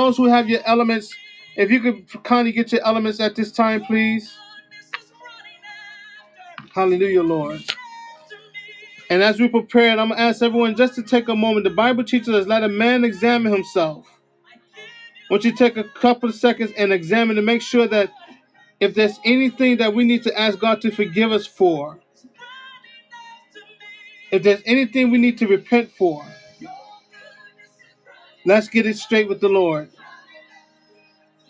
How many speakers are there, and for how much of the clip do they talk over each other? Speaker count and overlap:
1, no overlap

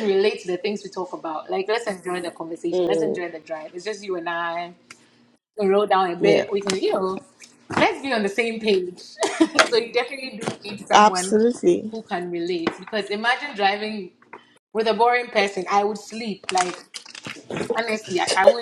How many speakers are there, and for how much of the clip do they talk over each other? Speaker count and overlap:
2, about 7%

